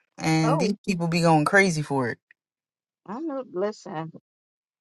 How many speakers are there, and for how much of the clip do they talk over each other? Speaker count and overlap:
2, about 6%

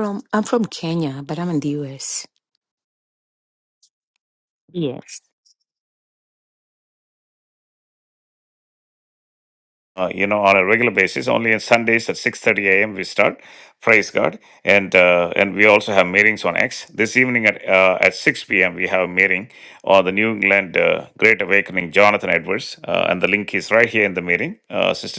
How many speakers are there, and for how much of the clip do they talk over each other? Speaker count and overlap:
2, no overlap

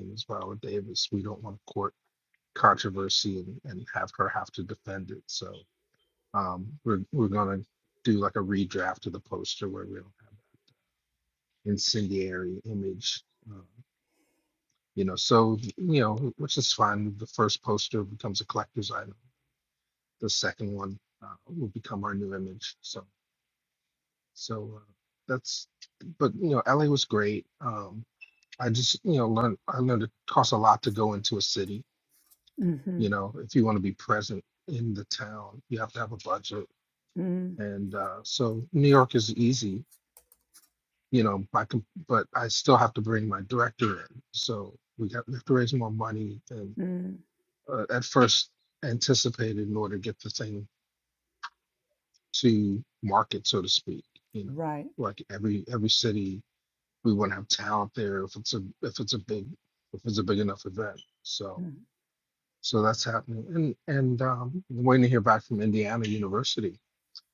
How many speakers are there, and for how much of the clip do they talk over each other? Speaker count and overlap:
2, under 1%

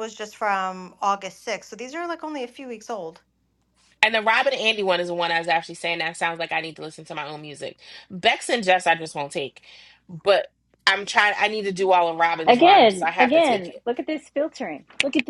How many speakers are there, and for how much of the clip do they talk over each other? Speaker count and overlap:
3, about 9%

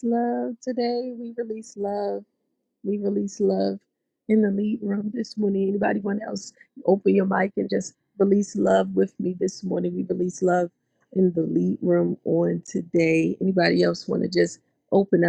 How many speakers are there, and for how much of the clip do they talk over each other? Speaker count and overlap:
1, no overlap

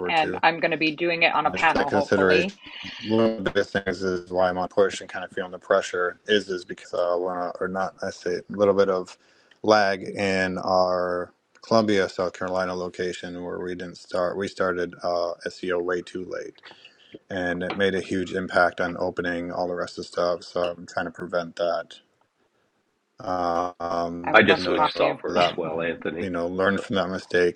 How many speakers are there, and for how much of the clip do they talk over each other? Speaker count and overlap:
3, about 10%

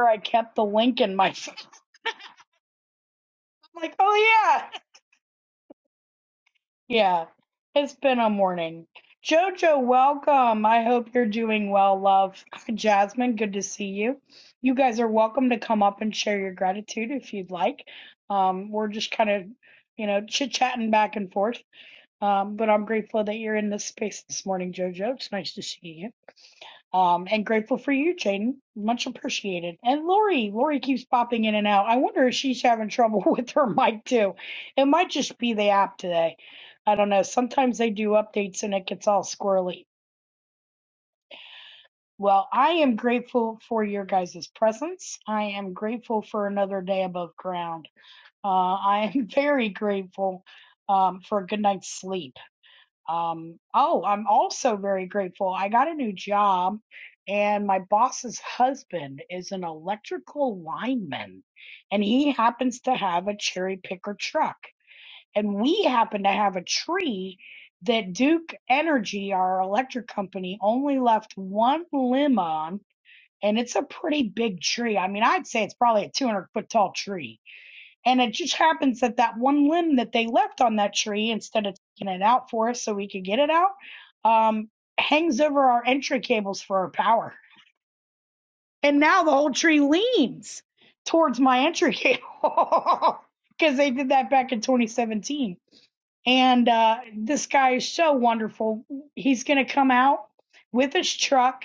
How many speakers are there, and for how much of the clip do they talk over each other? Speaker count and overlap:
1, no overlap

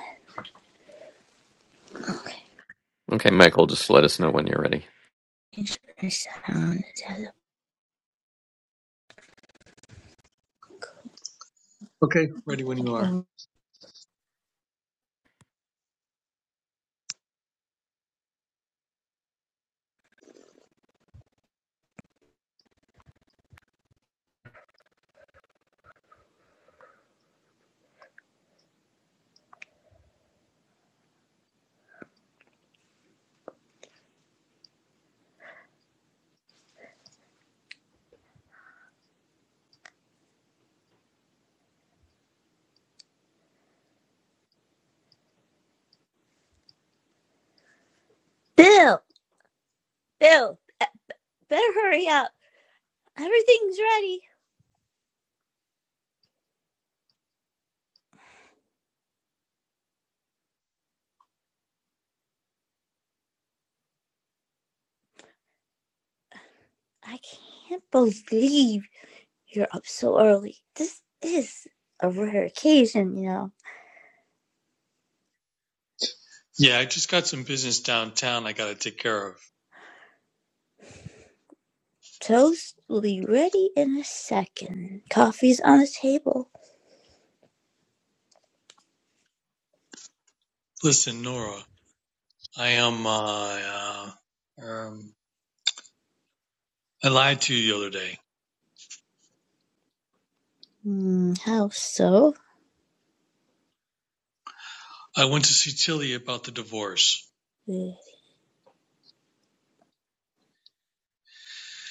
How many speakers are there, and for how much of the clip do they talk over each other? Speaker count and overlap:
3, under 1%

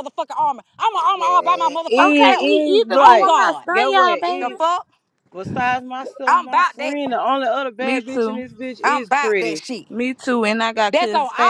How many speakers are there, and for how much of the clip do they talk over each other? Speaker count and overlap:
3, about 52%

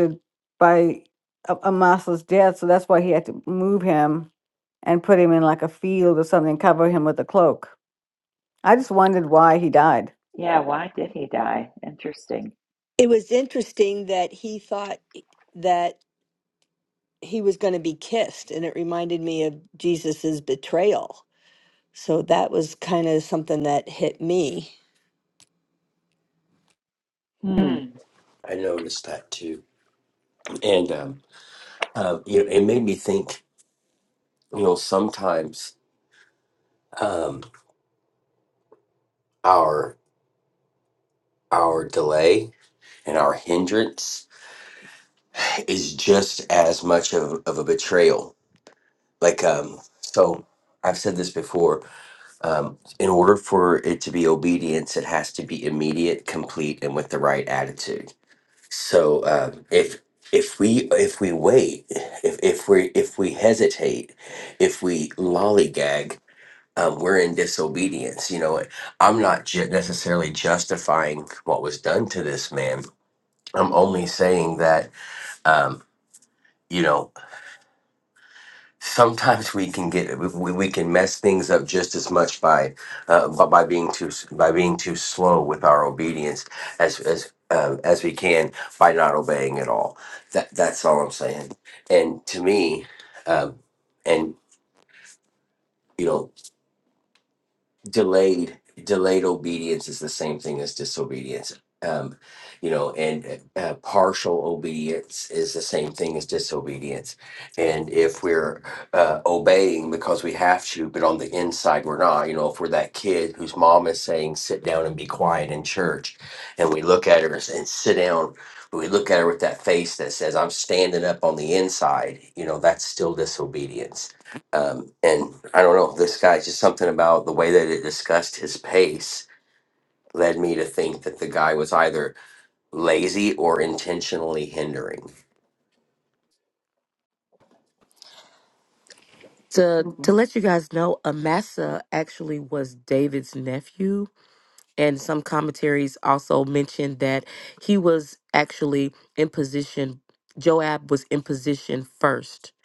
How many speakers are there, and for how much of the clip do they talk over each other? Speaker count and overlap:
5, under 1%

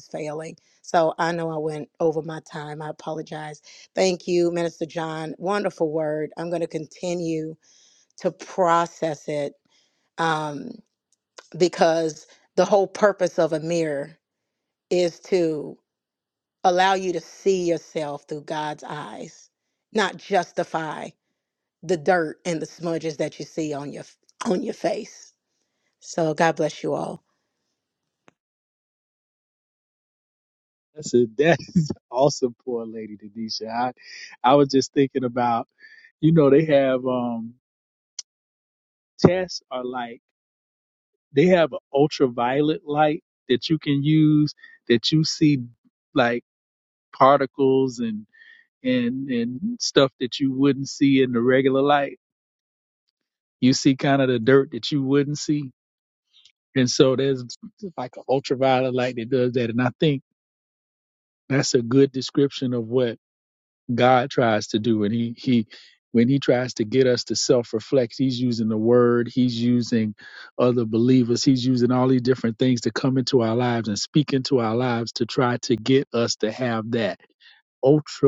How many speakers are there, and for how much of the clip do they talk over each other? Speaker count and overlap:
2, no overlap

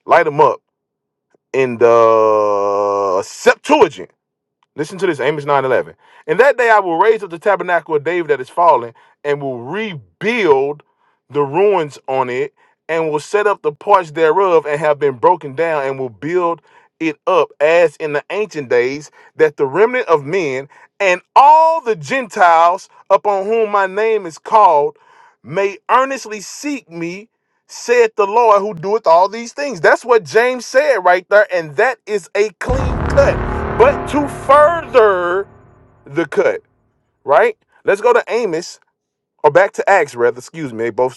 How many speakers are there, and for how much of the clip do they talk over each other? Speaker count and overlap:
1, no overlap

